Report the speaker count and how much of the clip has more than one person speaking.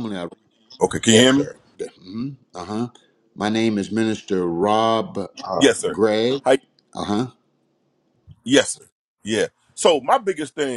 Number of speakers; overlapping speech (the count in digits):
2, about 7%